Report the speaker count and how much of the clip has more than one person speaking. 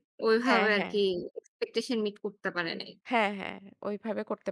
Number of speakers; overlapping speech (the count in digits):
2, about 11%